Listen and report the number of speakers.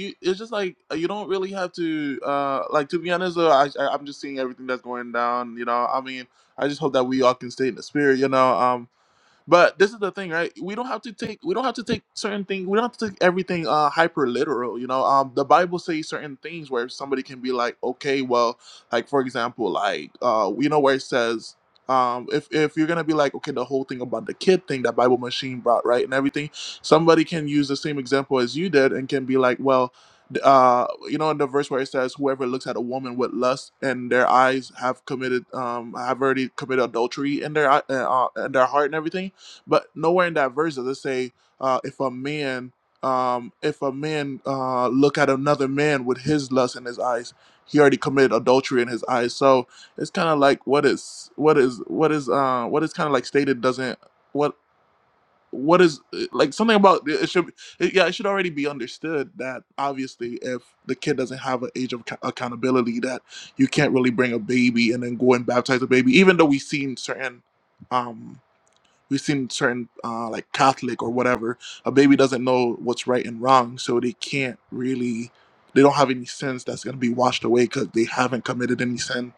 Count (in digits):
1